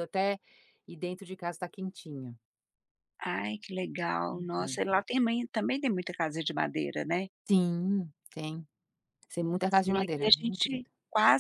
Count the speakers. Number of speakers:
2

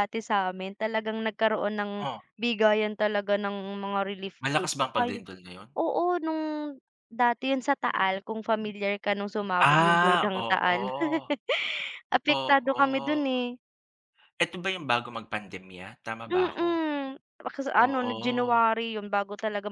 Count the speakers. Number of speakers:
2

